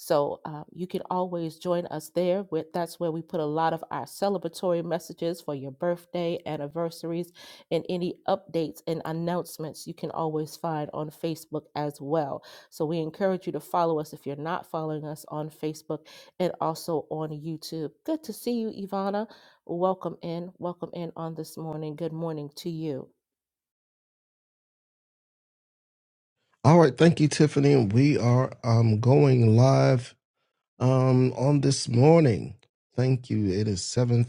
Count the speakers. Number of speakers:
2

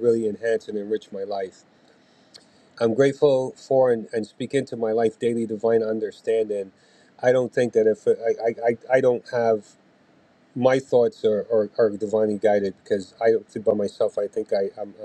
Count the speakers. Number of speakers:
1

